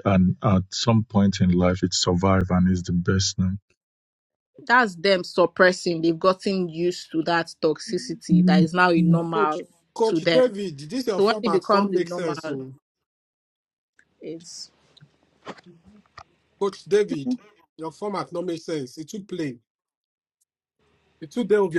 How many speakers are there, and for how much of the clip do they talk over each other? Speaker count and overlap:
3, about 10%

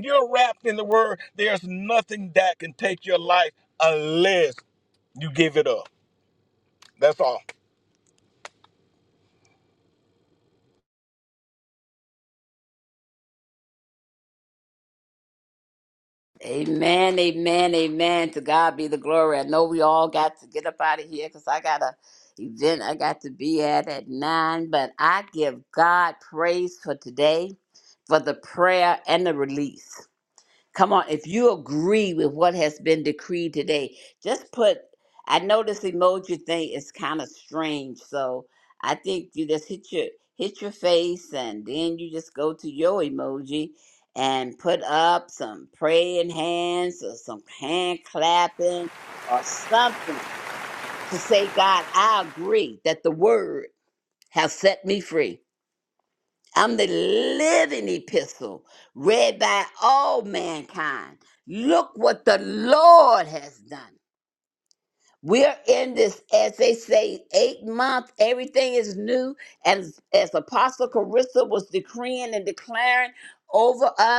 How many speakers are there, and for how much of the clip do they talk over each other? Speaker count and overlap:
2, no overlap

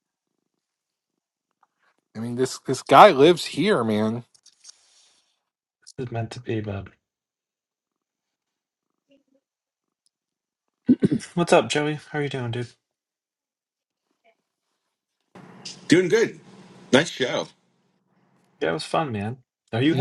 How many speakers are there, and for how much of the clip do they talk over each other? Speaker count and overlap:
3, under 1%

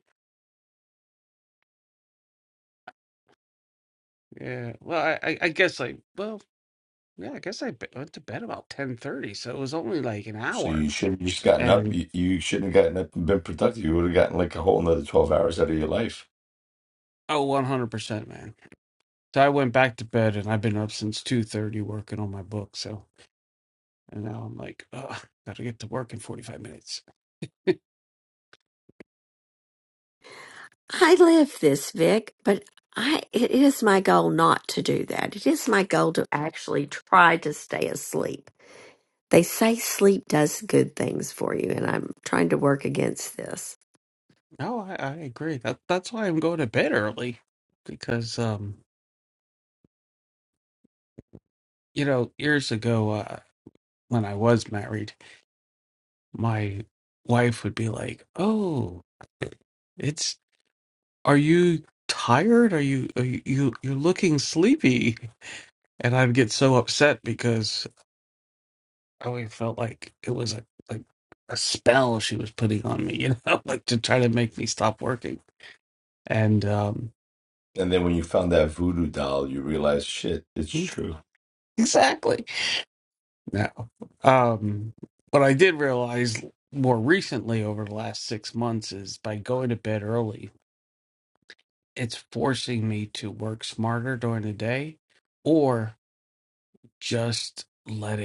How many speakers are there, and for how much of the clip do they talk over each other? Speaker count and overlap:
3, about 1%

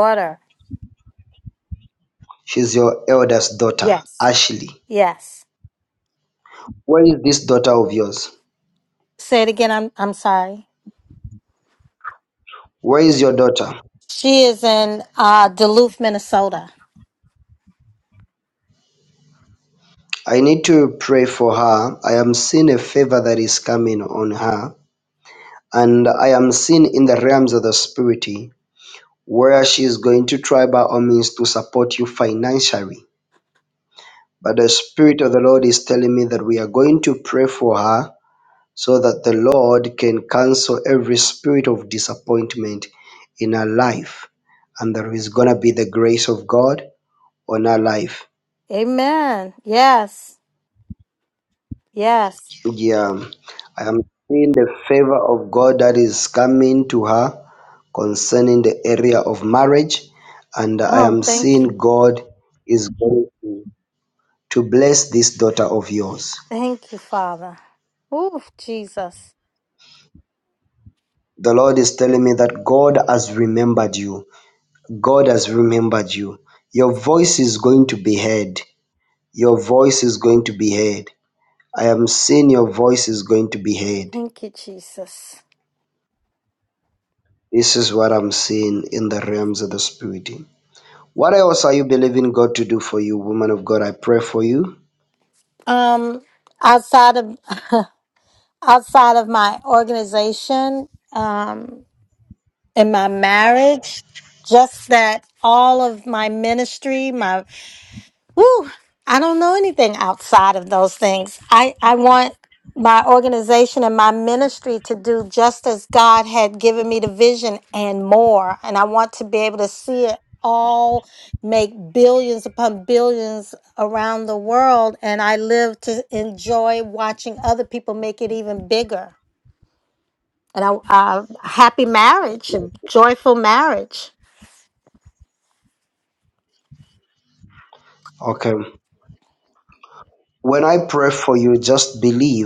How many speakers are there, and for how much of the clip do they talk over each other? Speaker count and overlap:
2, about 1%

